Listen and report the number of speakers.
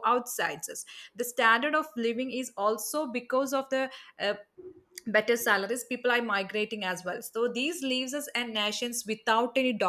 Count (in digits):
1